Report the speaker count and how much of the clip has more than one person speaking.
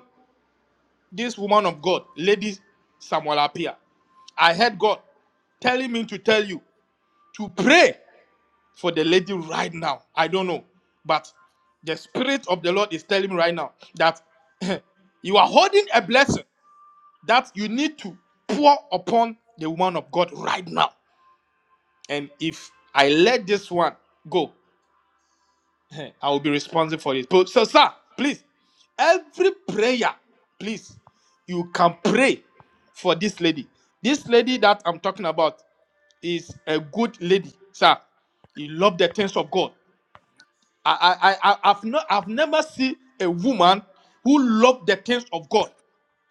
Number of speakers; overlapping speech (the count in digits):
1, no overlap